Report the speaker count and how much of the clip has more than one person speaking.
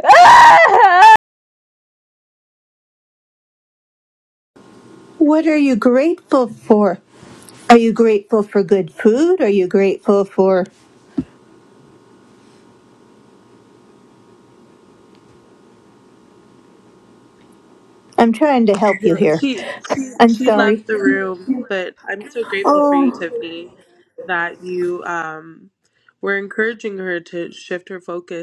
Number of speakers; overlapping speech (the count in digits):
3, about 6%